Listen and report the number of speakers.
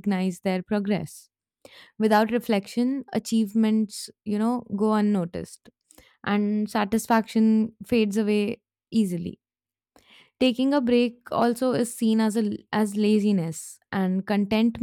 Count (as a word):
one